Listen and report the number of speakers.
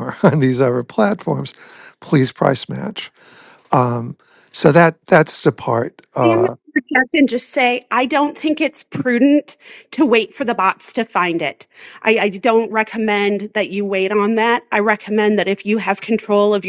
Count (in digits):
2